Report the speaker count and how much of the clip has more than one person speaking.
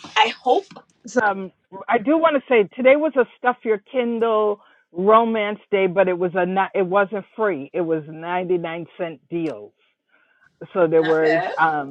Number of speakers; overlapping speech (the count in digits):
2, about 5%